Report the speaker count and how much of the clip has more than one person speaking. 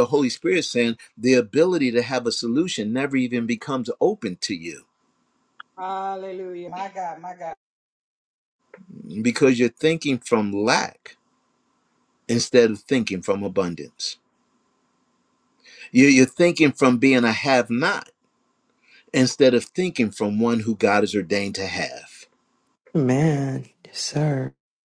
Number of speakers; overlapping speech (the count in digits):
3, no overlap